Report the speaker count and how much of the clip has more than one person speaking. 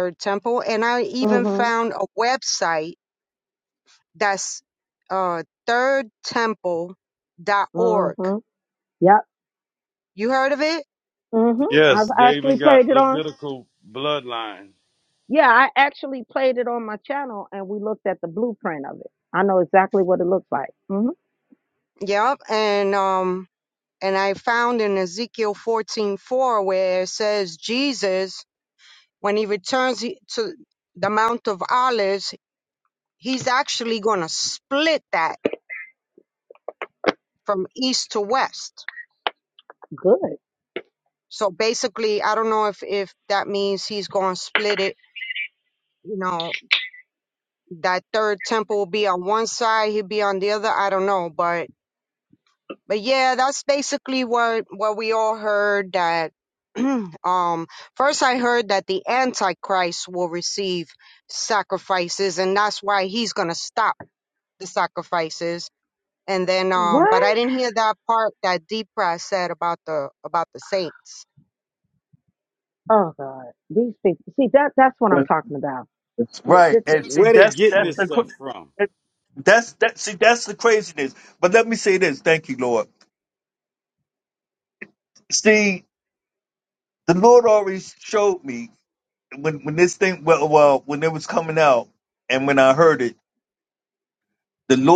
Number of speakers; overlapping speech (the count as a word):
four, about 5%